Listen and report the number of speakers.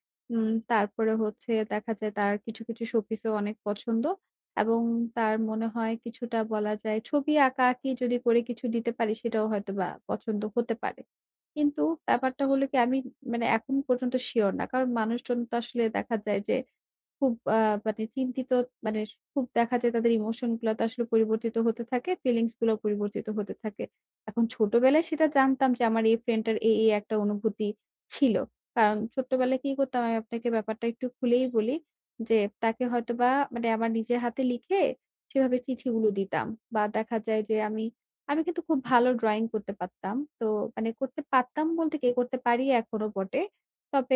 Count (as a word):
one